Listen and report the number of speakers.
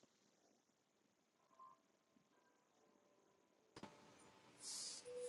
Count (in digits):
0